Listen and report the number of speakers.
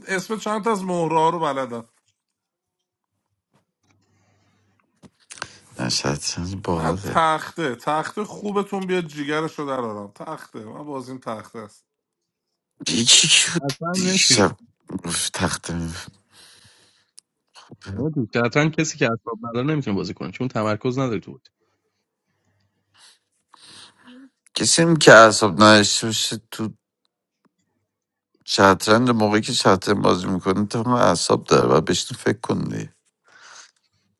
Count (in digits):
3